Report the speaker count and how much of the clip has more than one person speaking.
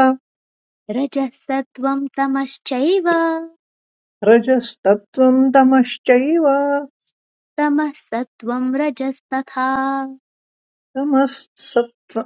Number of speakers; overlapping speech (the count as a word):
two, no overlap